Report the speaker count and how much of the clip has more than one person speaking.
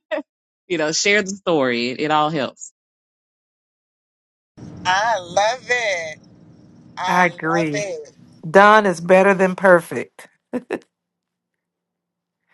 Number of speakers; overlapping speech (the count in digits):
3, about 6%